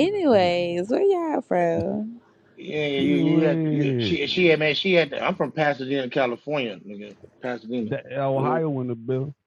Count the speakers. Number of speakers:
three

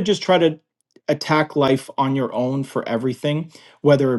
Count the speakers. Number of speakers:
one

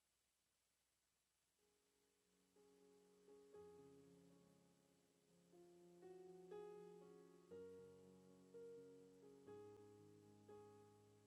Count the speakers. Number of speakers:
zero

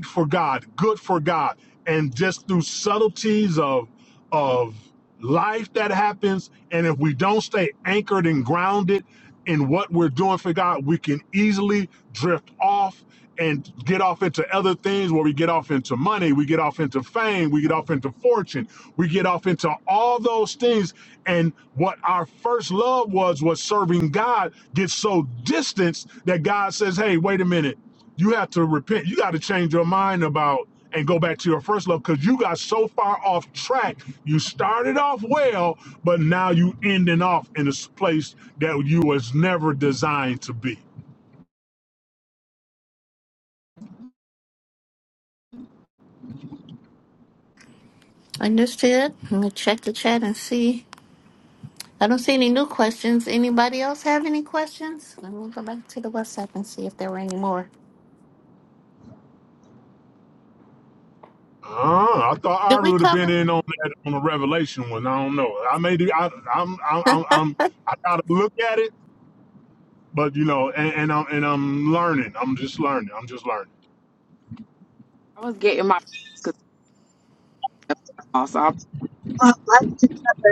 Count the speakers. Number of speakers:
three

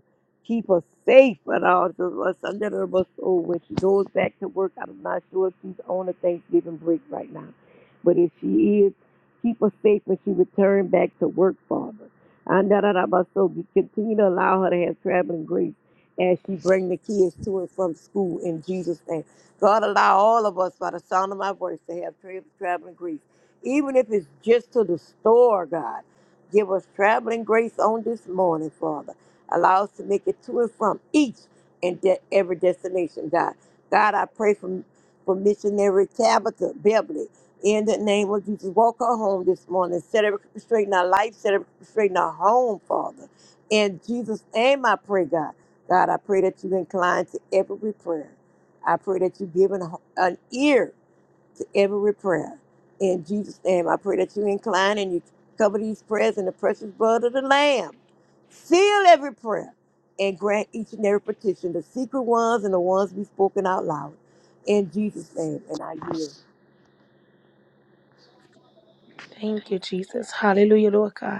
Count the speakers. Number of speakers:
two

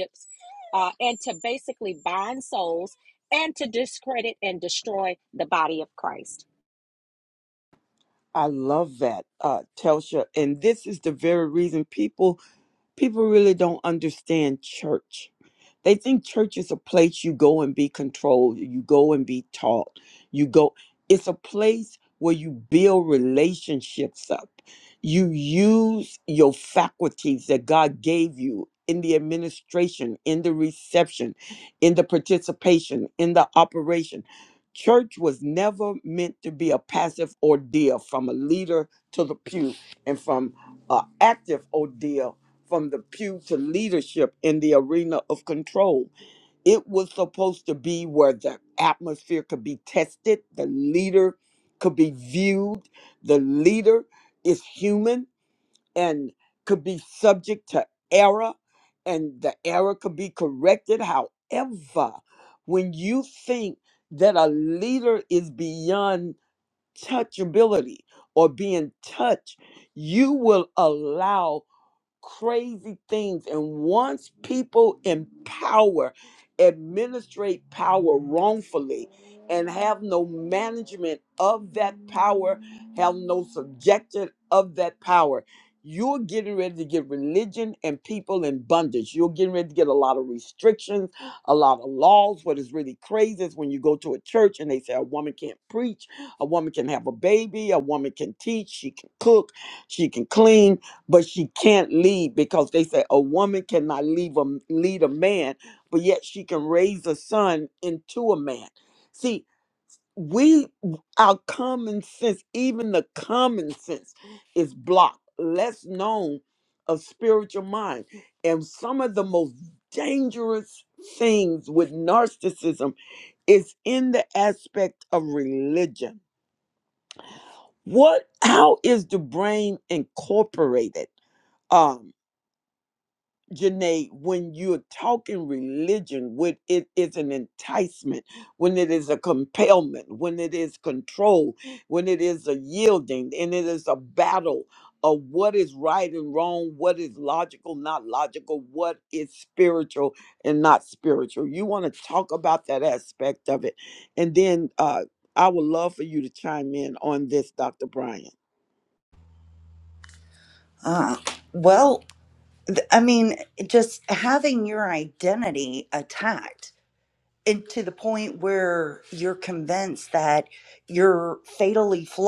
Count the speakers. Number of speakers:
three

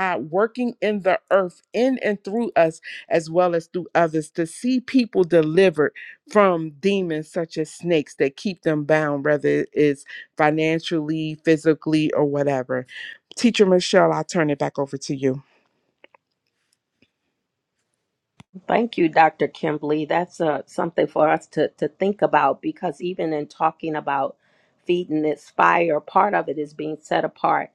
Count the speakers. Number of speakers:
two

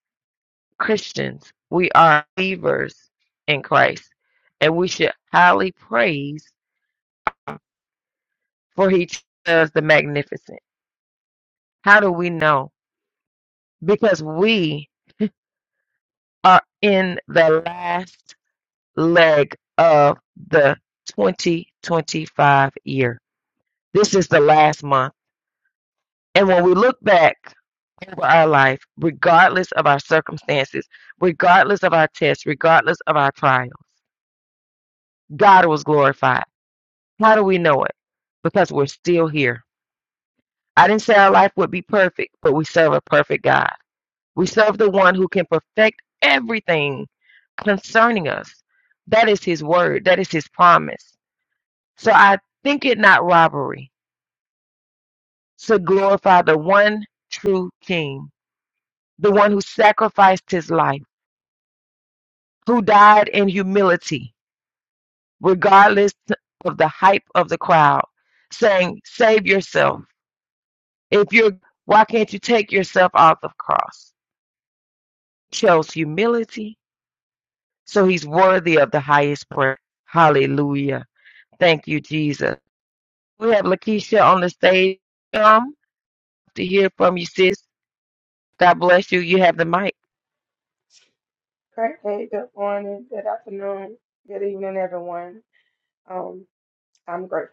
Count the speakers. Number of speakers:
two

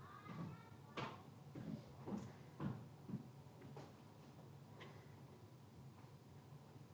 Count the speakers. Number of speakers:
zero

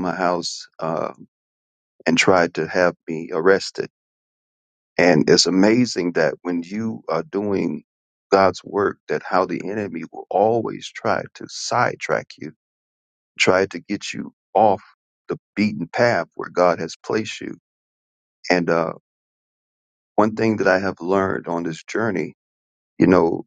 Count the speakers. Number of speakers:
one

